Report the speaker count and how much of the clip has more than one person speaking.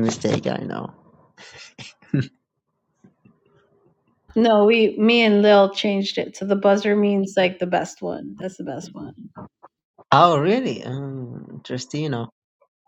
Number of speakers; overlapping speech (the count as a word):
two, no overlap